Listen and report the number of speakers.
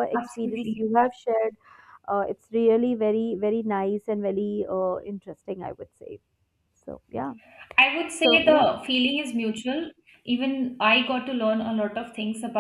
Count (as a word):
two